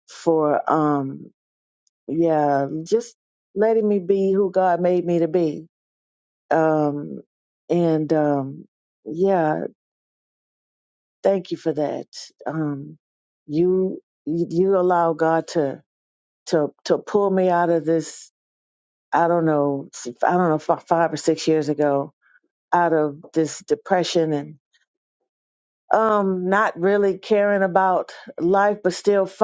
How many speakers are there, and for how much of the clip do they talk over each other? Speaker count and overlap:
1, no overlap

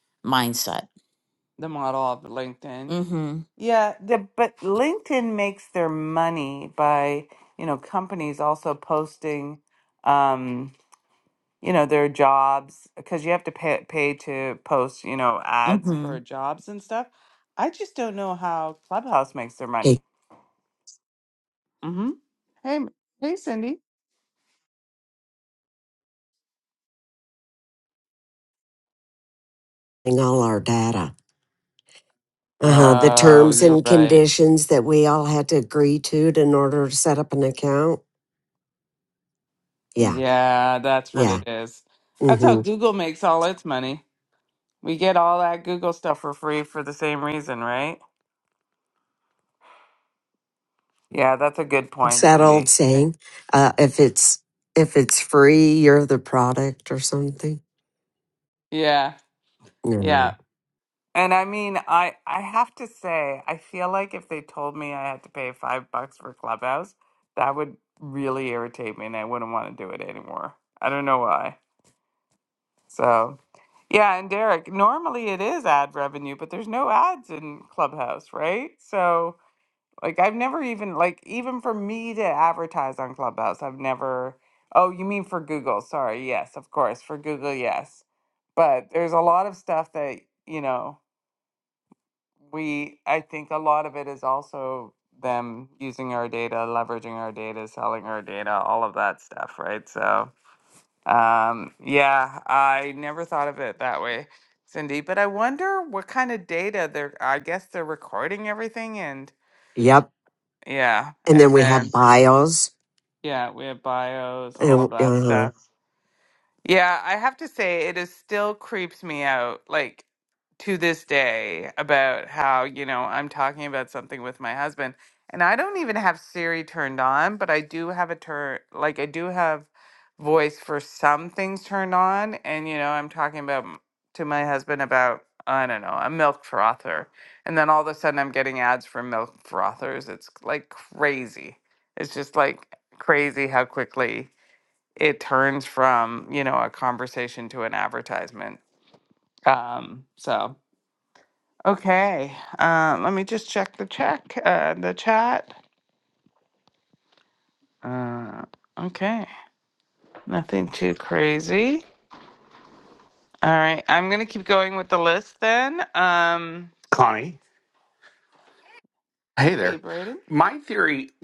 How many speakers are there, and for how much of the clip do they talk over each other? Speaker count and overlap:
4, about 4%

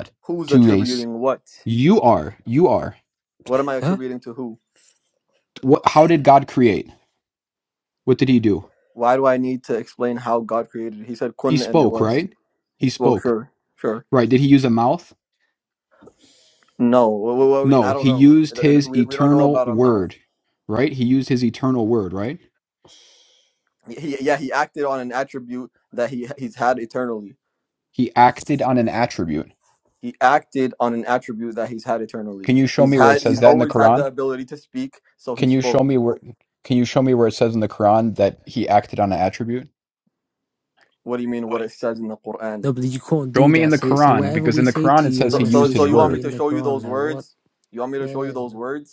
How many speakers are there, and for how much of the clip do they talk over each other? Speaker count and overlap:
3, about 20%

